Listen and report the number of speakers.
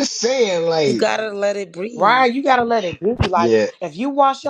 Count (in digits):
3